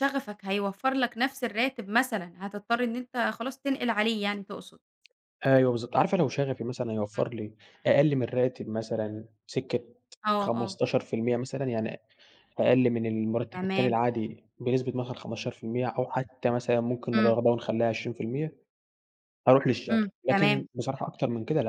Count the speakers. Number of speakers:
2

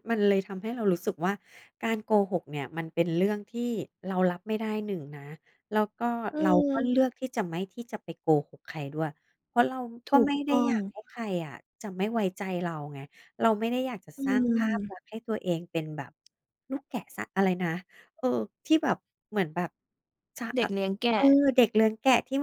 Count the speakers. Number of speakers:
2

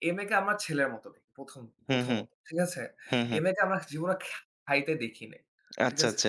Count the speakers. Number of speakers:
2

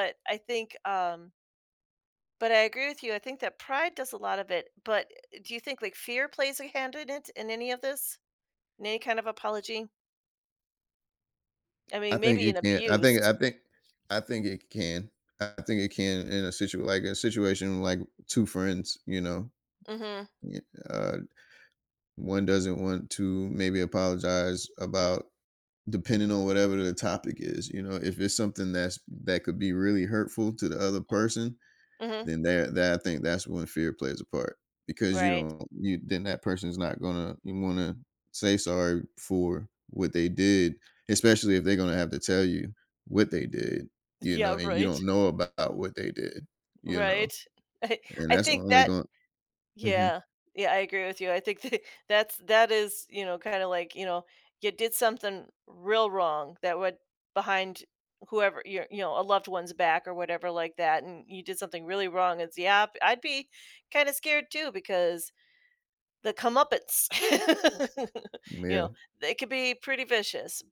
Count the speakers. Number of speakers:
2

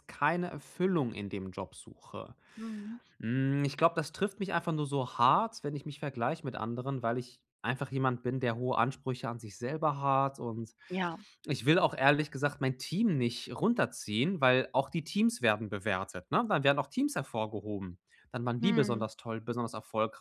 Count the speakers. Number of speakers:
2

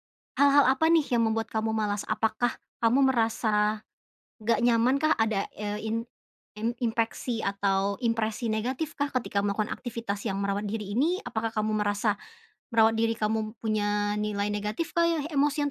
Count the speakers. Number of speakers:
1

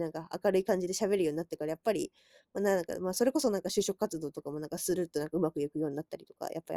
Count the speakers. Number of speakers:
1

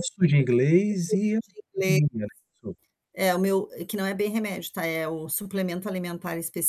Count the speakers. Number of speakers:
2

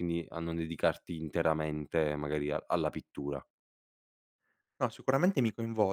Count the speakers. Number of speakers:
2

